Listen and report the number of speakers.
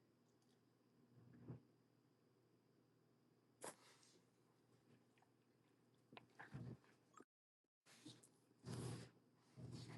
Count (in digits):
0